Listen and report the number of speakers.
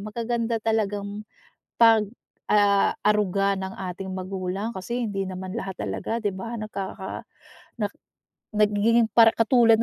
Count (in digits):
1